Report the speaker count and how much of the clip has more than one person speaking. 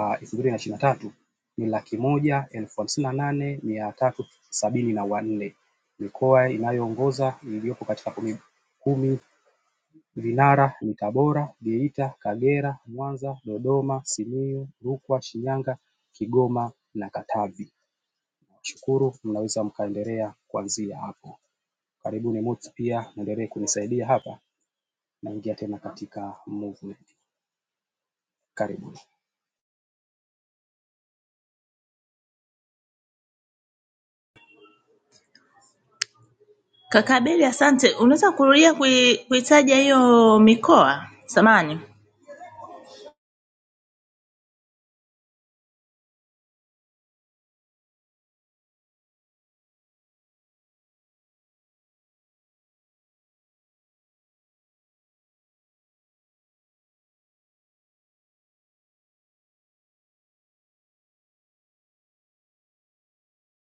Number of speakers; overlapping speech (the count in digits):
2, no overlap